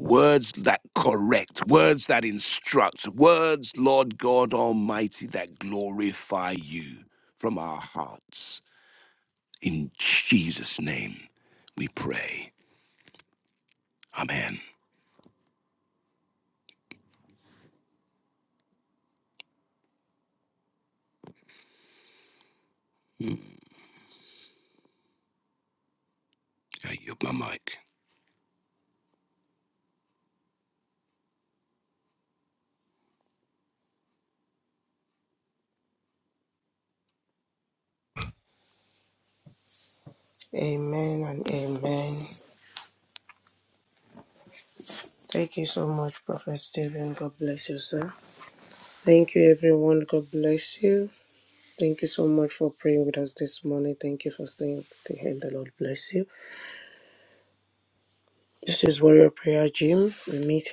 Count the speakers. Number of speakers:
2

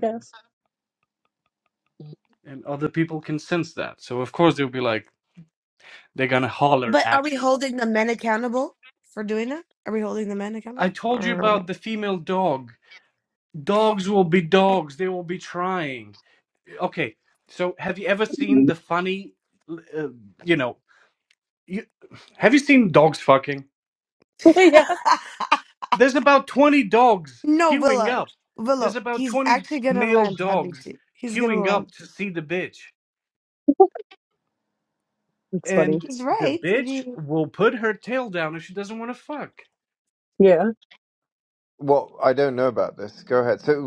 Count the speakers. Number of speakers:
4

